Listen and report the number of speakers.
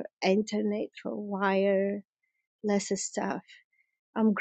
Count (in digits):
1